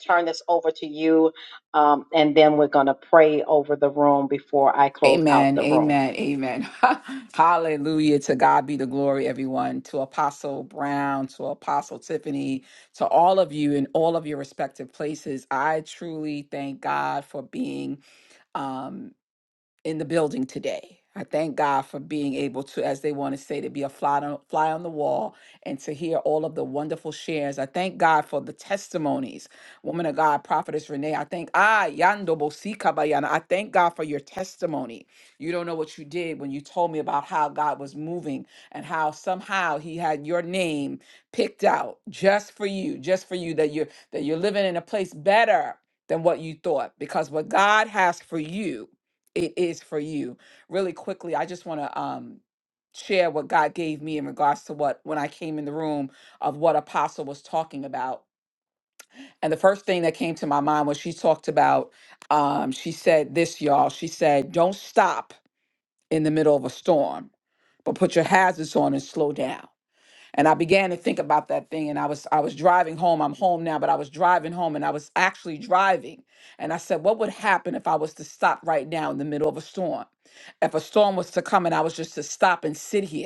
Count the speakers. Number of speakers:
two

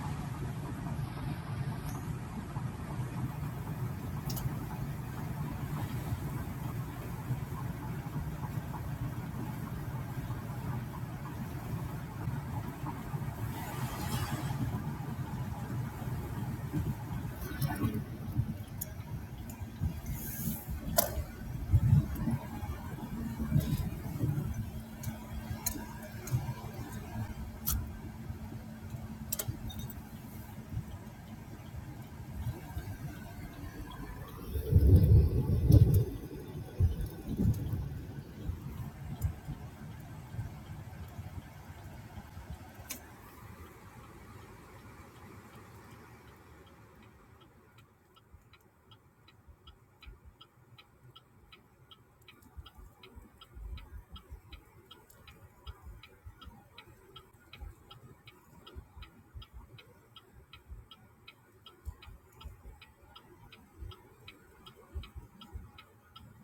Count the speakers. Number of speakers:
zero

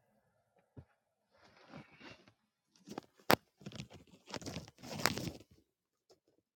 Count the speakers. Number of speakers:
zero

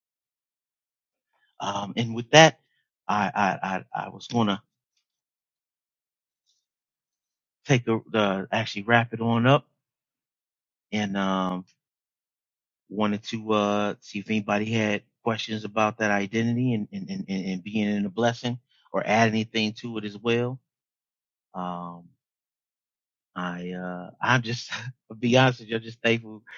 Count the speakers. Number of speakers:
one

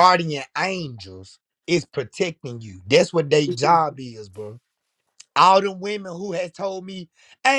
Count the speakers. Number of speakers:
one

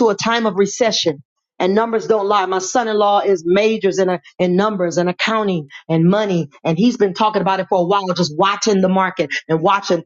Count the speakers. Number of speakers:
one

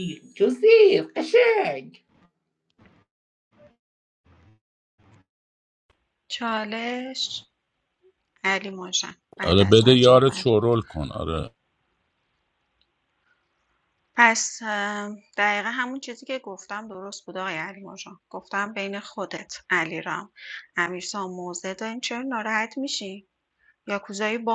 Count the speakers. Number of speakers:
three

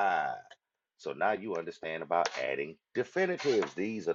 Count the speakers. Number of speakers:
one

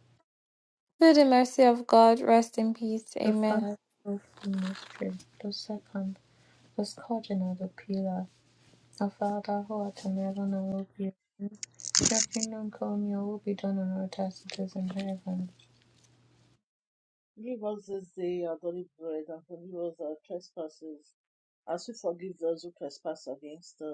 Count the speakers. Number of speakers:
three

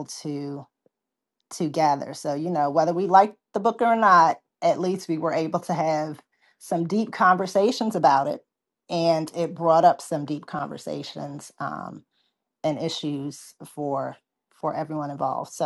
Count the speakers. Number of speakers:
one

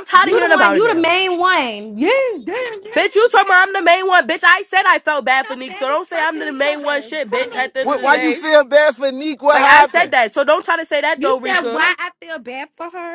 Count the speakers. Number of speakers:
three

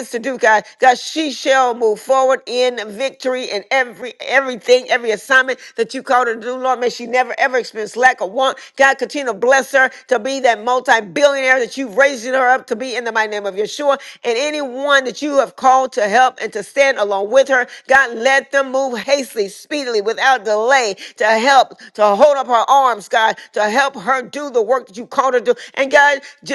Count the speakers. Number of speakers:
one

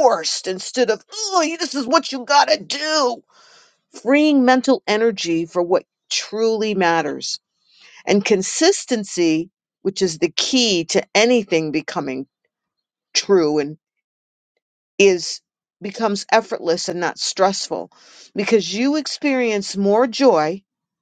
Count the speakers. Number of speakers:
one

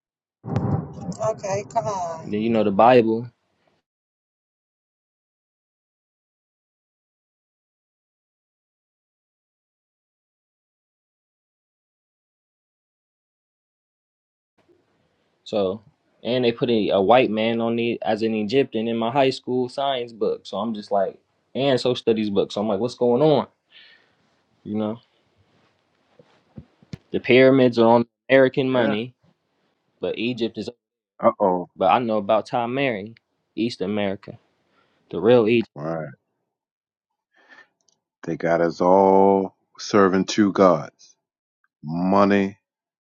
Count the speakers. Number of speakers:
three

